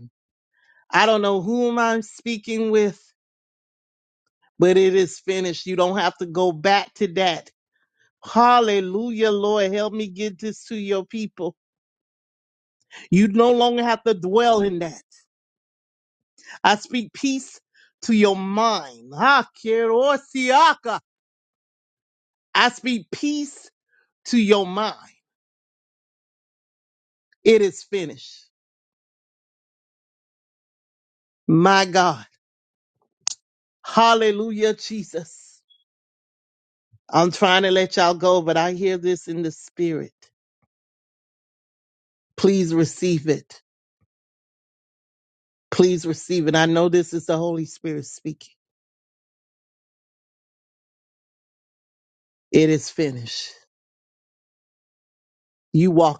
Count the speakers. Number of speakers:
1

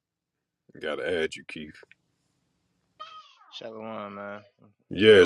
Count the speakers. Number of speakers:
2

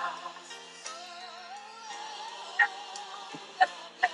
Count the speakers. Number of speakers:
0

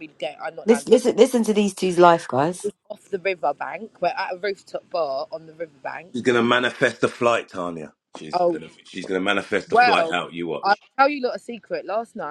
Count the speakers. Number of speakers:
3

